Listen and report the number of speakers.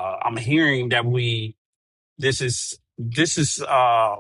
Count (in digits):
1